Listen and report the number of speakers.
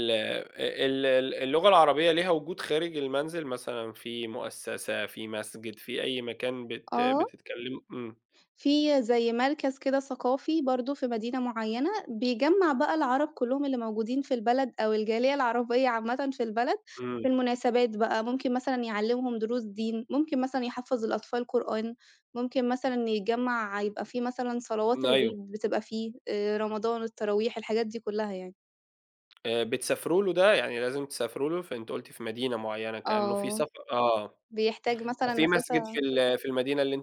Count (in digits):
2